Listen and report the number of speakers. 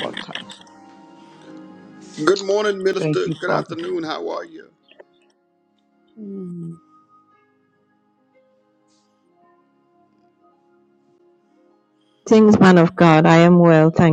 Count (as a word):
three